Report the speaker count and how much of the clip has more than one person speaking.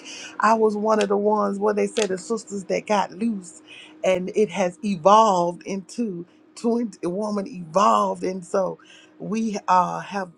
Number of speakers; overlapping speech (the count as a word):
one, no overlap